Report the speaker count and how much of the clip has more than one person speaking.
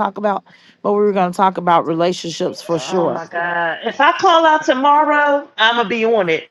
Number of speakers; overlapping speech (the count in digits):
2, about 7%